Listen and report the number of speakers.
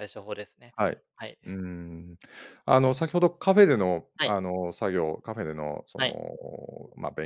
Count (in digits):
2